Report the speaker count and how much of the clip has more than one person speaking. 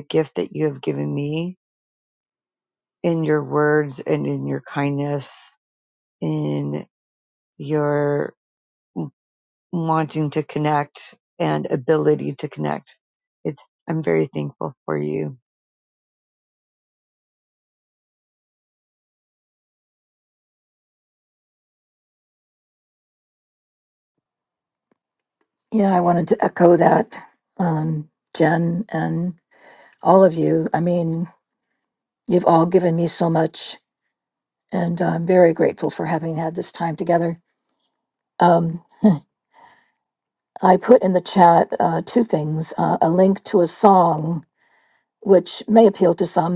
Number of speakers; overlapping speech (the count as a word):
two, no overlap